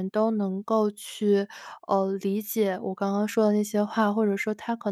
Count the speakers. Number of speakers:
1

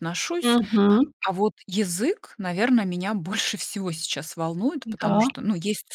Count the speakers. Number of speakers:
2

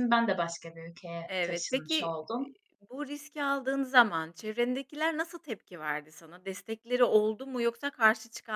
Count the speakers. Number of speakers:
2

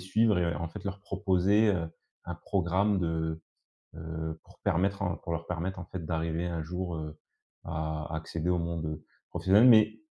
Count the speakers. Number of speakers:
1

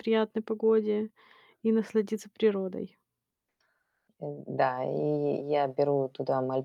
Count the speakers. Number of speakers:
2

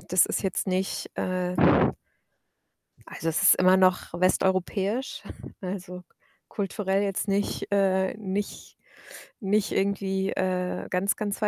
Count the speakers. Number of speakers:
1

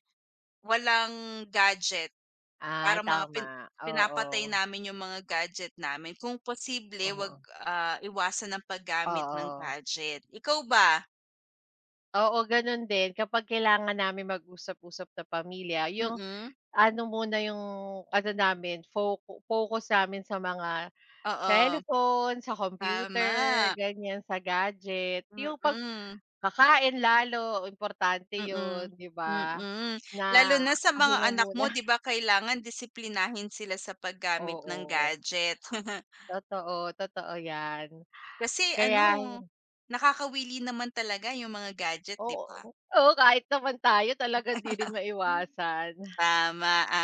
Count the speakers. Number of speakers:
2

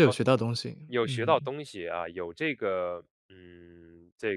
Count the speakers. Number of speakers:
2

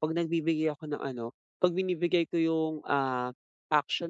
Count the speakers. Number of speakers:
1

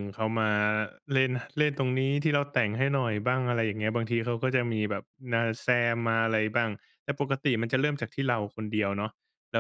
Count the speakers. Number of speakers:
1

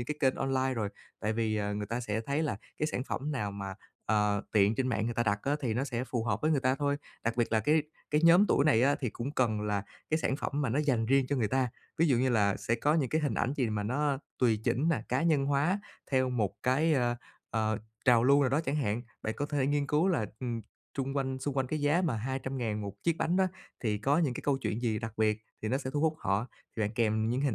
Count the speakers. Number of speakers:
1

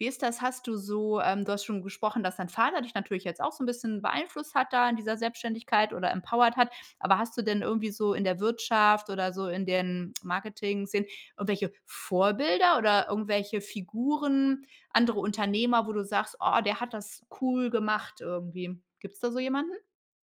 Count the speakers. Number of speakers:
1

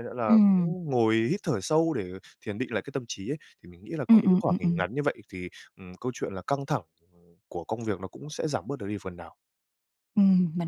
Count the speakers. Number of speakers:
2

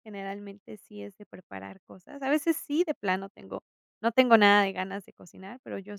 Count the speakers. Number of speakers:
1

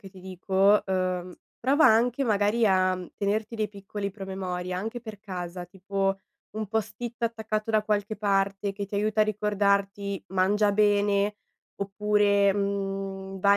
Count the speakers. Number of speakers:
1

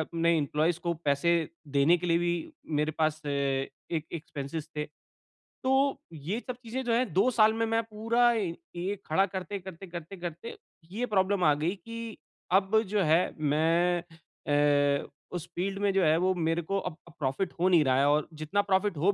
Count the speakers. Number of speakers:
1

